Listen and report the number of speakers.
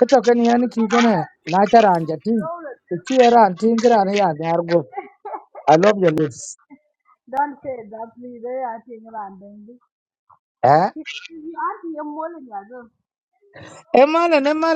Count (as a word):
two